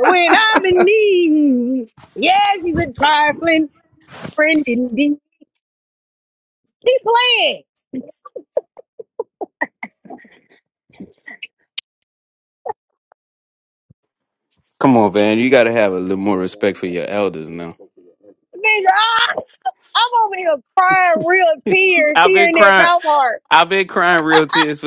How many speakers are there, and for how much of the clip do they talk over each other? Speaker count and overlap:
2, about 3%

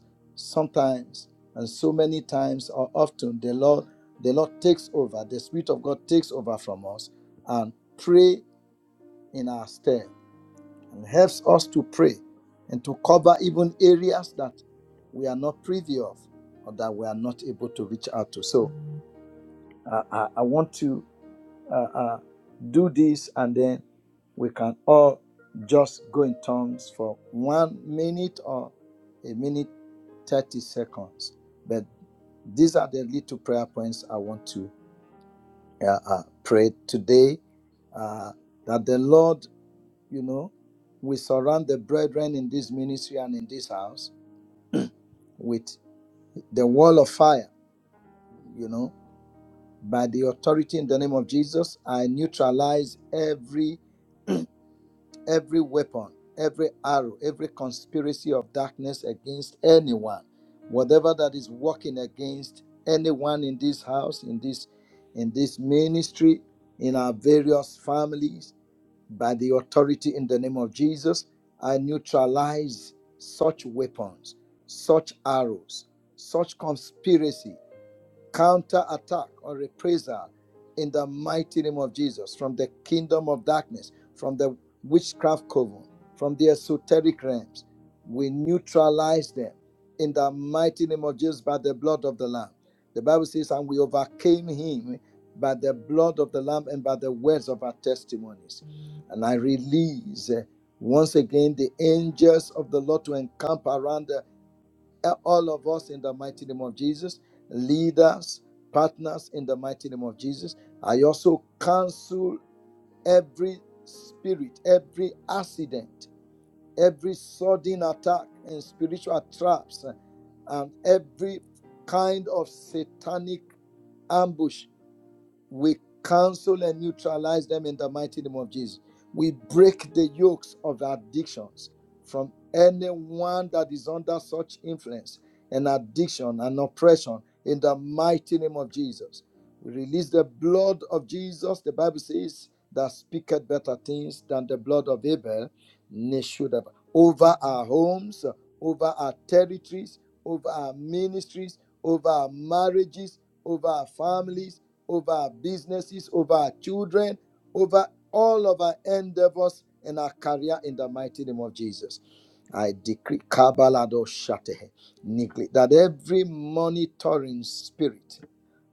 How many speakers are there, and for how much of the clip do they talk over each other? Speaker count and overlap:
1, no overlap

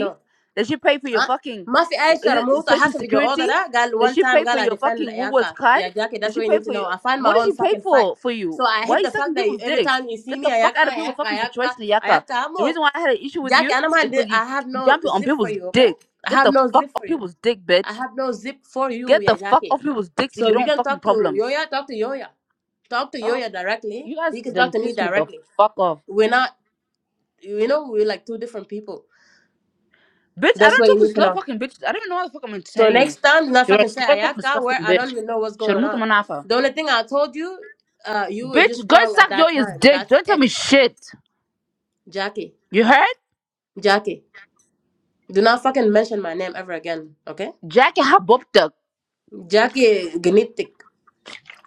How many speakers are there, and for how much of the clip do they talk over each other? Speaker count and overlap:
2, about 38%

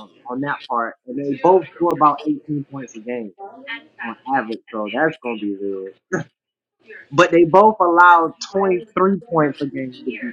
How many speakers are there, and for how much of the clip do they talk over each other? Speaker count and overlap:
1, no overlap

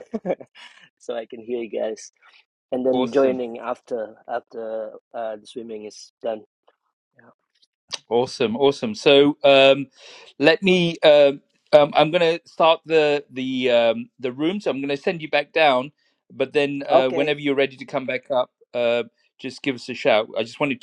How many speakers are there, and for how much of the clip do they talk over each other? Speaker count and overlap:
2, about 4%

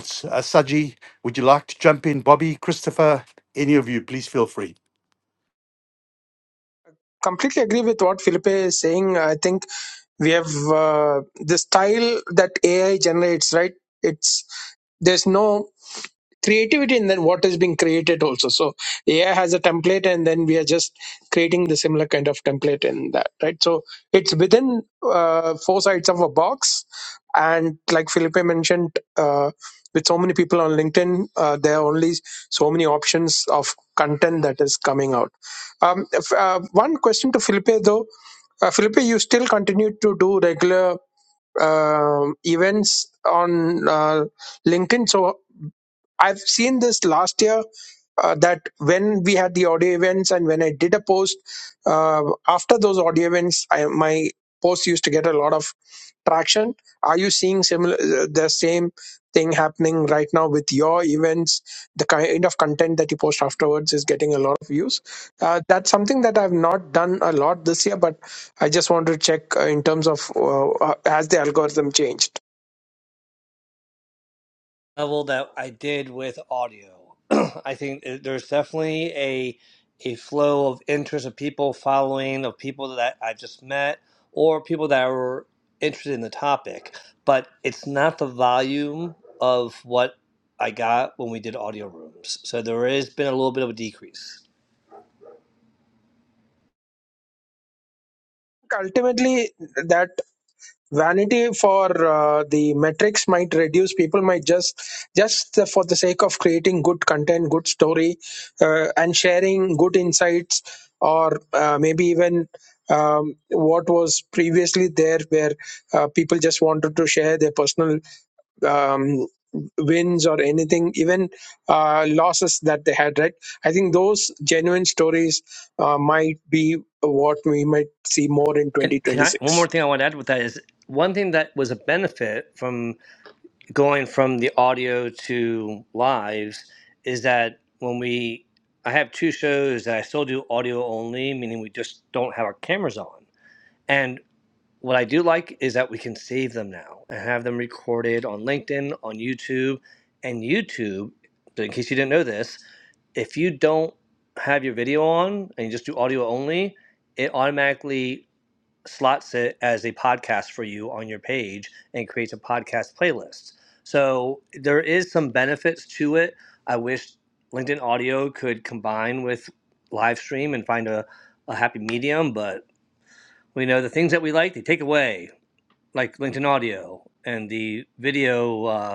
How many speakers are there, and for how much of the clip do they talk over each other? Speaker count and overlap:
3, under 1%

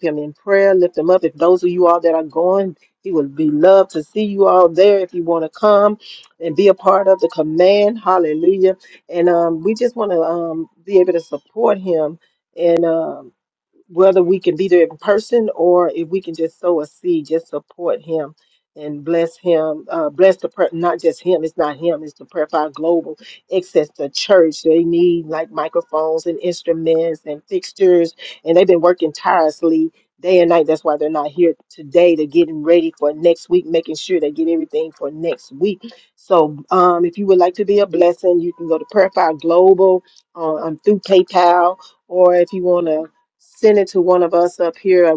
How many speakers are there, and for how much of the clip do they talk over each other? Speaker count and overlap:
1, no overlap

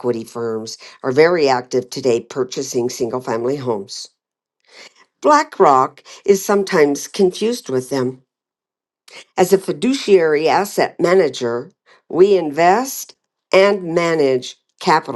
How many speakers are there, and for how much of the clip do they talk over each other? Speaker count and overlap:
1, no overlap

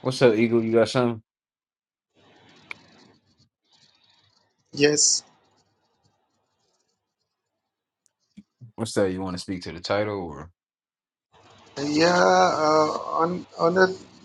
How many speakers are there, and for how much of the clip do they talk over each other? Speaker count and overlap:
2, no overlap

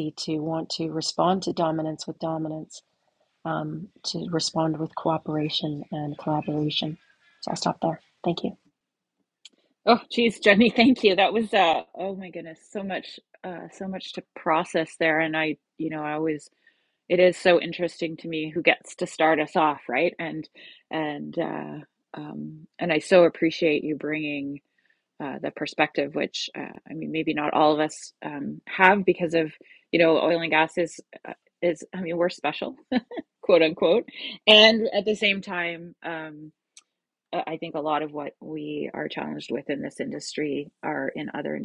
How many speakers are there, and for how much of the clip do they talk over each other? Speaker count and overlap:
2, no overlap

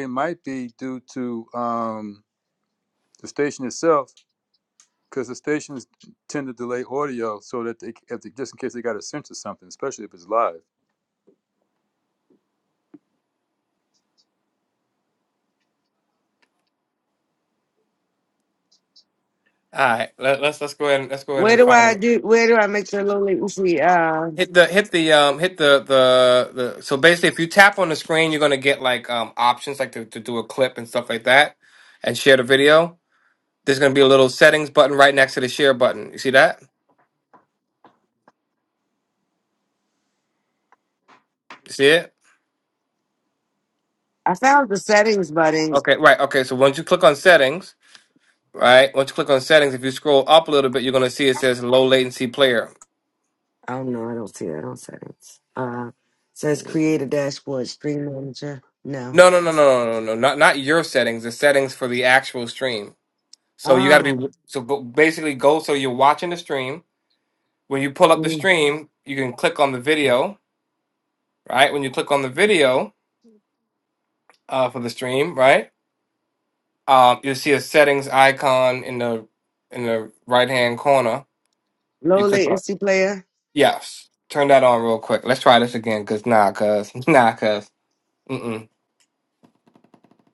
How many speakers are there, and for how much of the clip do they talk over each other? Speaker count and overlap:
3, about 2%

